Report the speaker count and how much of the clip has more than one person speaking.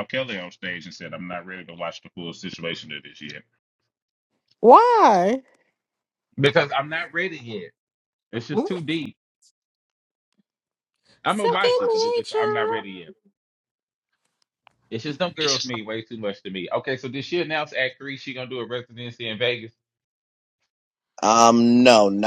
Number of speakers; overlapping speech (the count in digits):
3, about 7%